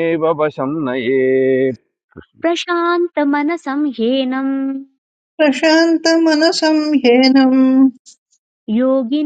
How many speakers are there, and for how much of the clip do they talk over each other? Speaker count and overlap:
three, no overlap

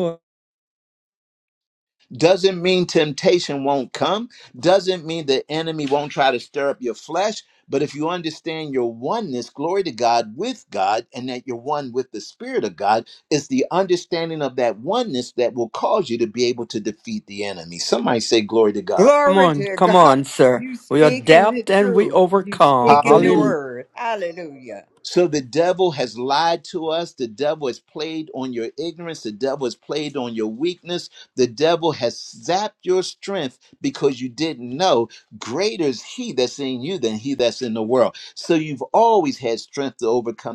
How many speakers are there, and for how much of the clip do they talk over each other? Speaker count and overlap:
three, about 10%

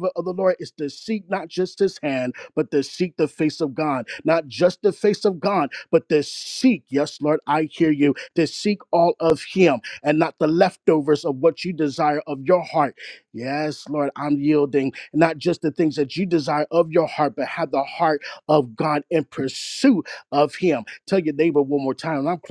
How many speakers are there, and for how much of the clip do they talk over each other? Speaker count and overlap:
one, no overlap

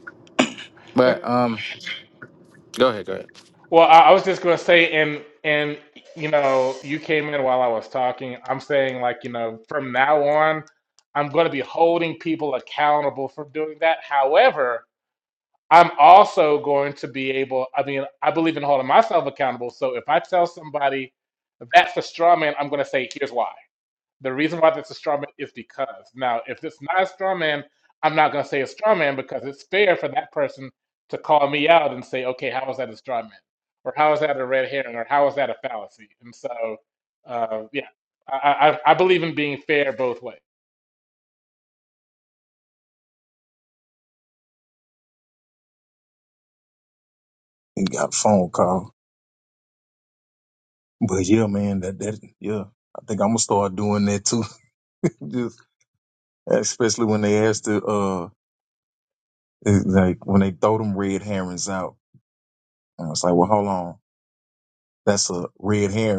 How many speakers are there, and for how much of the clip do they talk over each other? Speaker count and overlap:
three, under 1%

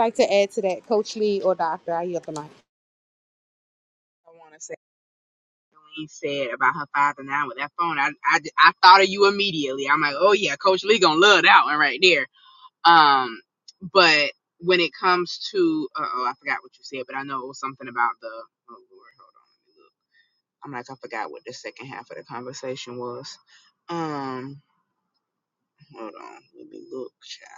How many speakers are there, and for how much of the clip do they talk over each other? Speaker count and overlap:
two, no overlap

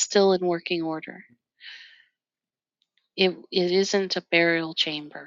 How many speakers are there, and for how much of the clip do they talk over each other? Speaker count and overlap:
one, no overlap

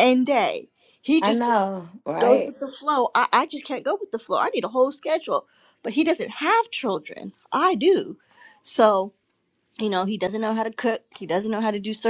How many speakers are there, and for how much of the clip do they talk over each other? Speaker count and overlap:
two, about 5%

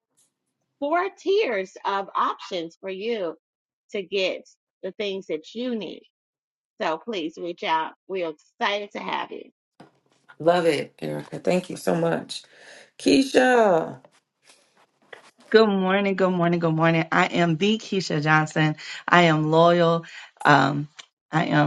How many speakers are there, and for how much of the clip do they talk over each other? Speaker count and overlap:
three, no overlap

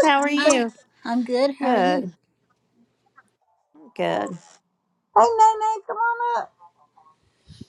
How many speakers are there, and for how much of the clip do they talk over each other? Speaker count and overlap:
three, about 9%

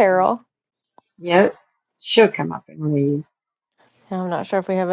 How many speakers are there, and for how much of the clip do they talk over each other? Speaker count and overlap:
two, no overlap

